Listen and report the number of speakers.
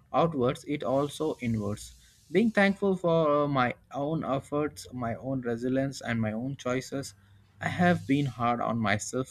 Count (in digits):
1